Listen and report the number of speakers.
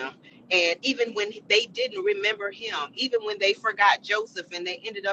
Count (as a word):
one